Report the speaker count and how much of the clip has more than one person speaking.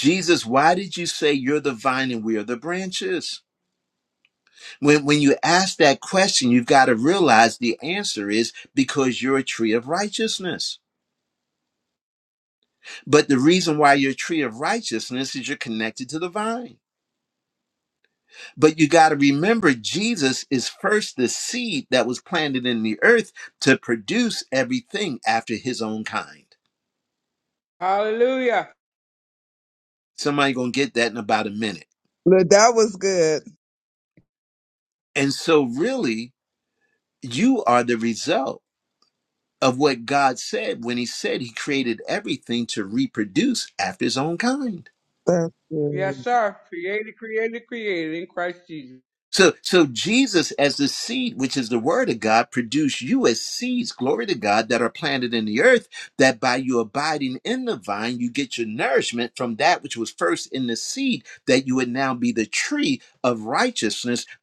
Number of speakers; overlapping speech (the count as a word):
three, under 1%